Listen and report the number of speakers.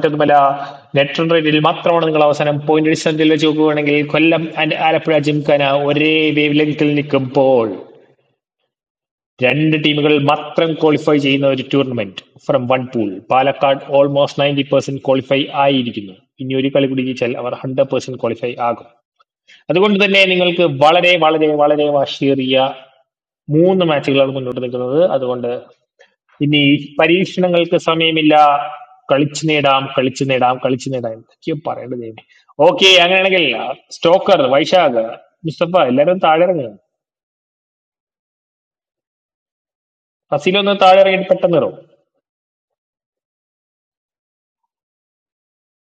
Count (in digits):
1